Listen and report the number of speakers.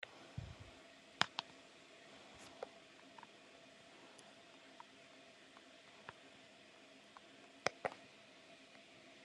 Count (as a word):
zero